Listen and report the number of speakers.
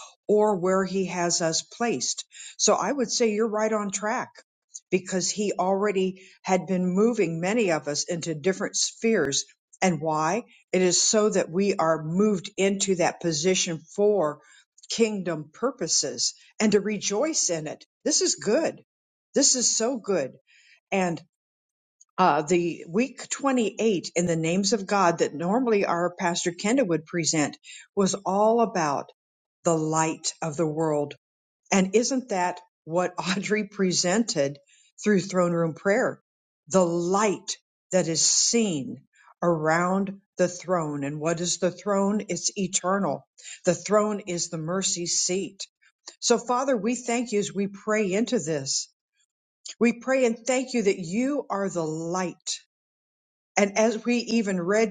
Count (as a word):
one